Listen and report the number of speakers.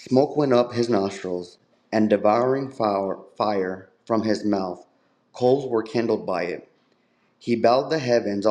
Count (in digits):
1